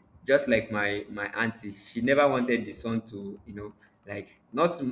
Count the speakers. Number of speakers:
1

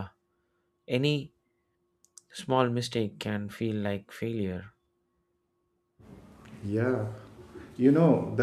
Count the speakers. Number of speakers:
2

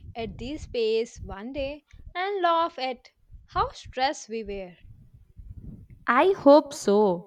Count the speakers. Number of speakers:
2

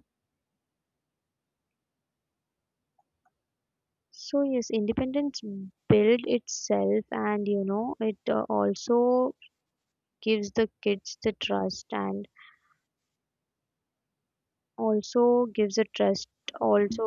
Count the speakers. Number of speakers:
1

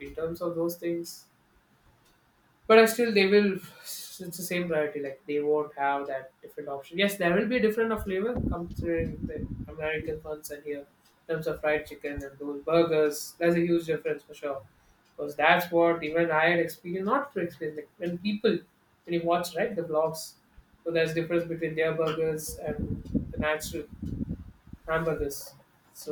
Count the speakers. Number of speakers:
1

